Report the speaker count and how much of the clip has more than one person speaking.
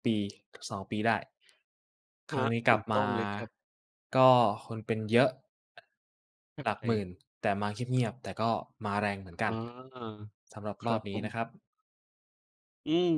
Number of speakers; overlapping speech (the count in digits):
2, about 11%